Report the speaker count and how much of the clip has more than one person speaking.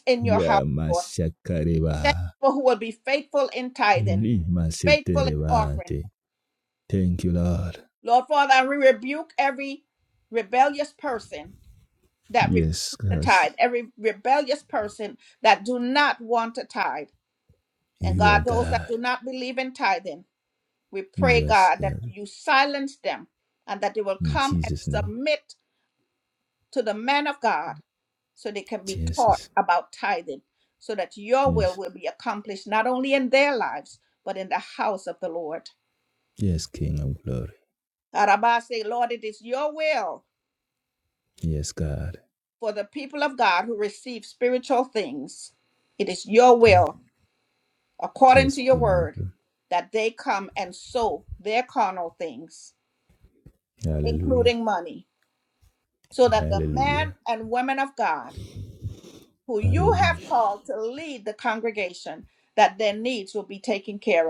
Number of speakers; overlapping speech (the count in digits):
2, about 13%